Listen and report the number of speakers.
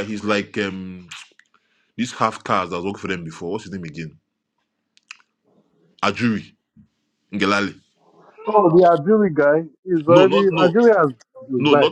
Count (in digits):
2